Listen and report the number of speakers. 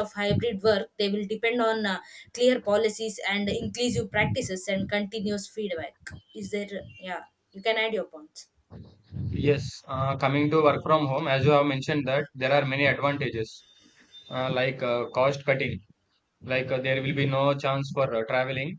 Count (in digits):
2